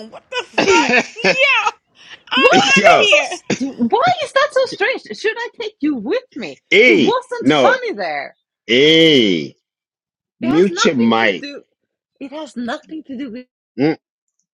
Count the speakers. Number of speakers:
three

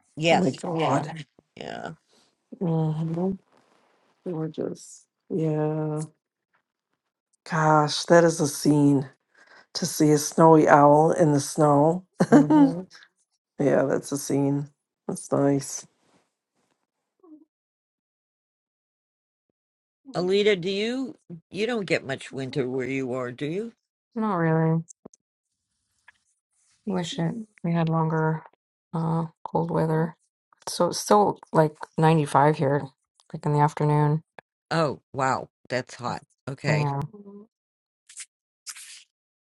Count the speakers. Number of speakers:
three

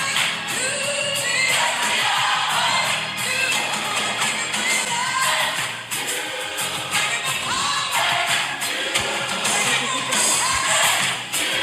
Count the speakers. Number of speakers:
zero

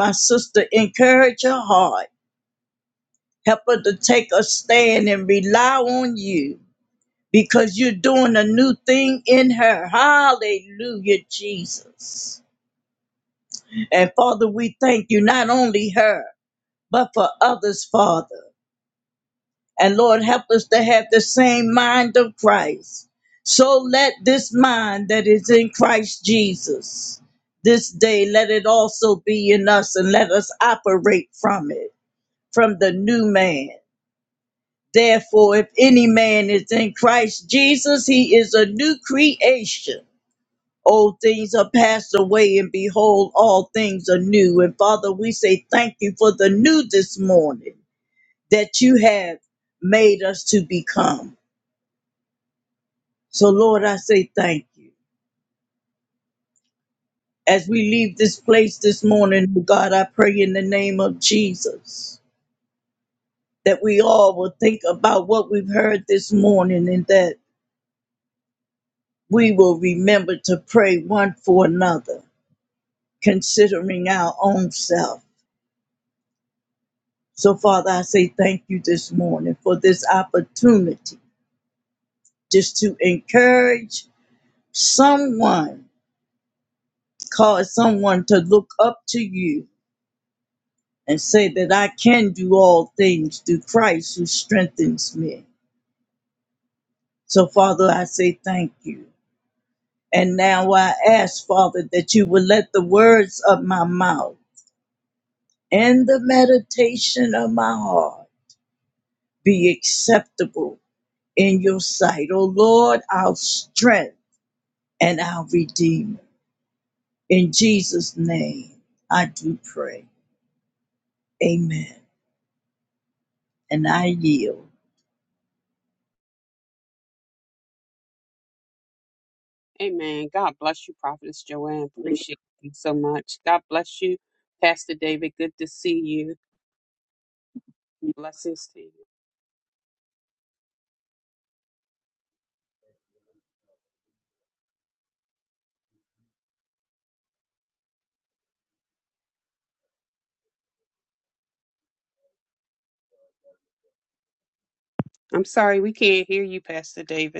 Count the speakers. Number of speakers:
two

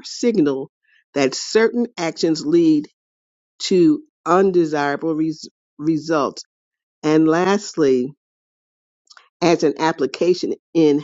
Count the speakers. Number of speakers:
one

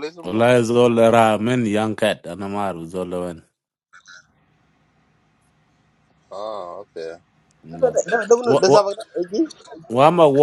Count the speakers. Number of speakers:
three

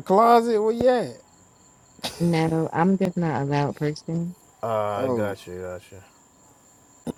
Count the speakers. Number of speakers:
three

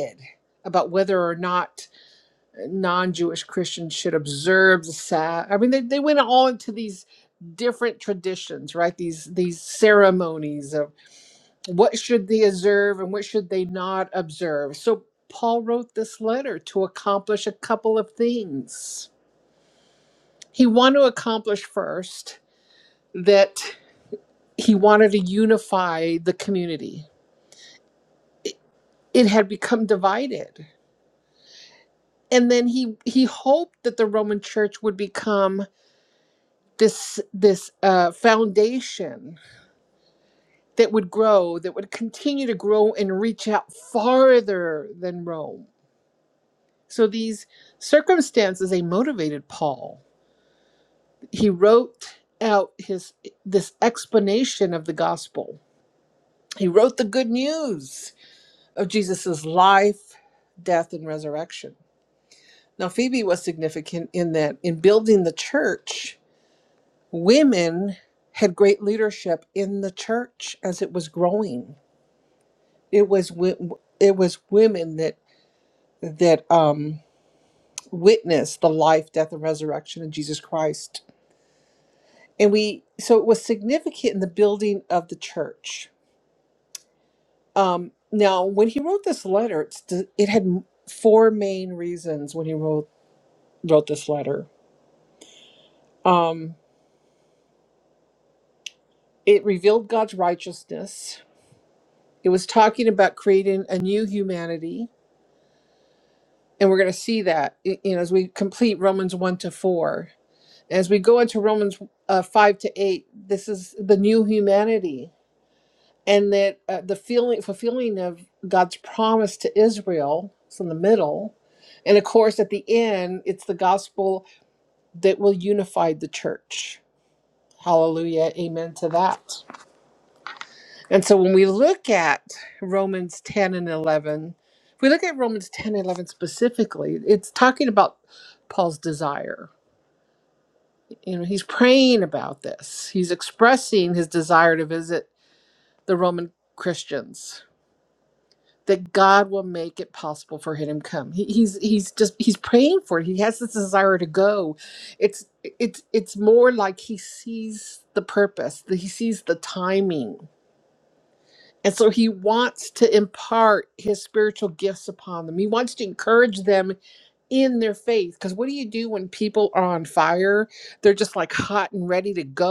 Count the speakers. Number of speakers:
one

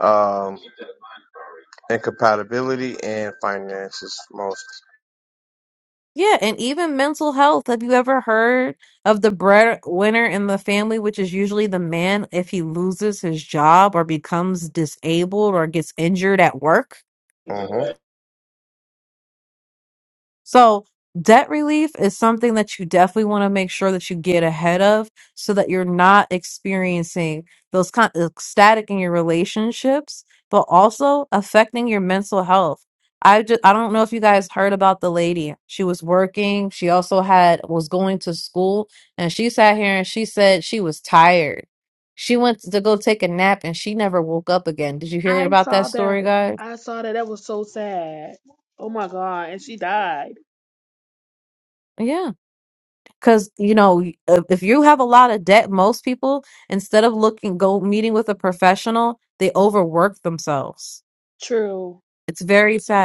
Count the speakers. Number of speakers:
three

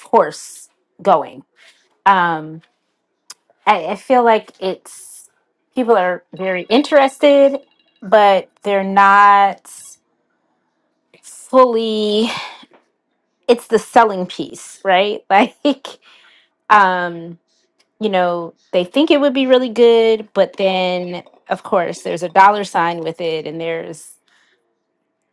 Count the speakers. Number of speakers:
one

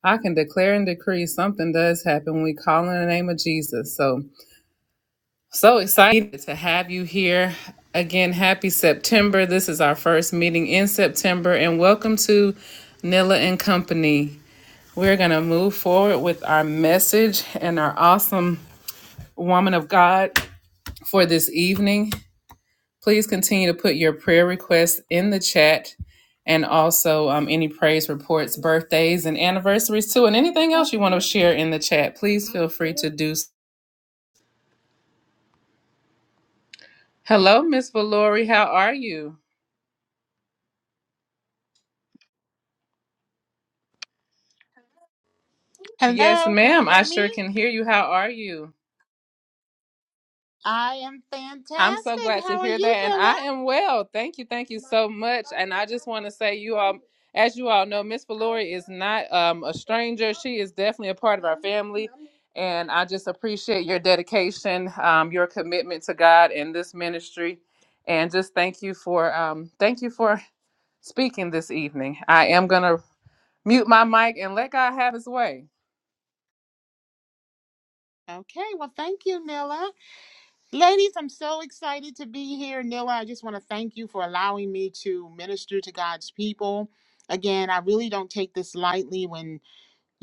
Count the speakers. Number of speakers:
two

